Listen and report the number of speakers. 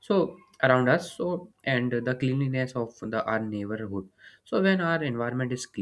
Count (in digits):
1